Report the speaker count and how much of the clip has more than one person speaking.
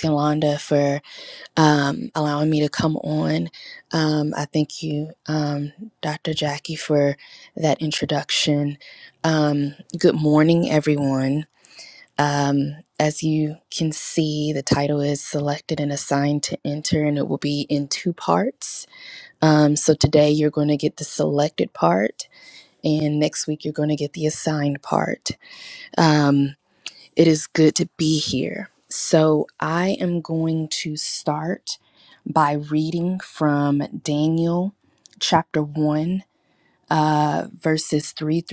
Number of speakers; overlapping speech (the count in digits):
1, no overlap